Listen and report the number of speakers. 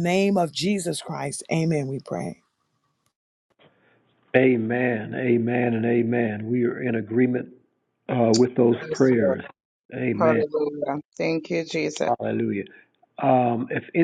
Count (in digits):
3